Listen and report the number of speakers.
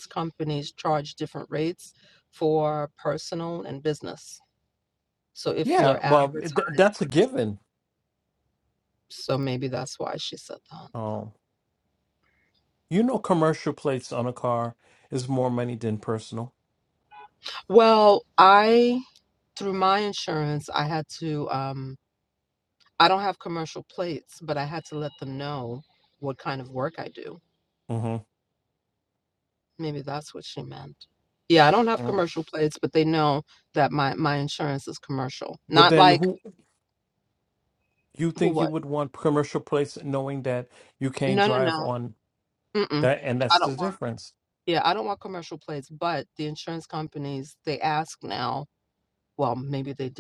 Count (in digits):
2